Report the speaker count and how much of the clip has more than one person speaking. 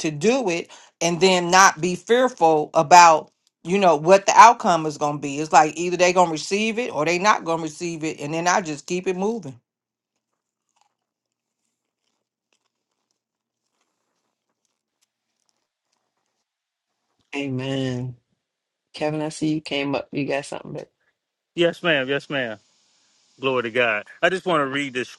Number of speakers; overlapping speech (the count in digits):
3, no overlap